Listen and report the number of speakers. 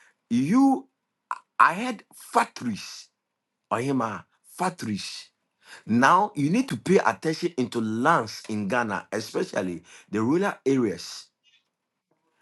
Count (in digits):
1